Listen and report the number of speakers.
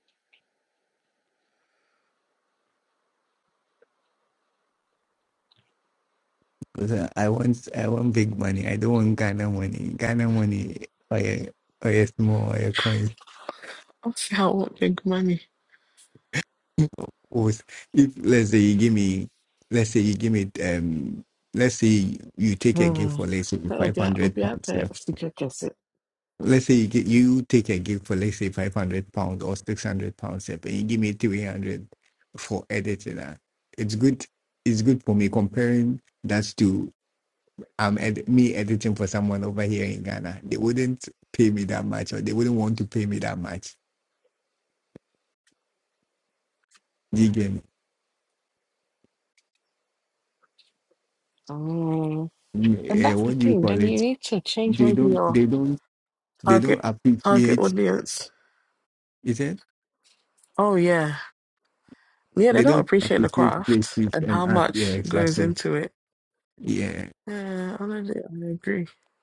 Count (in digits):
2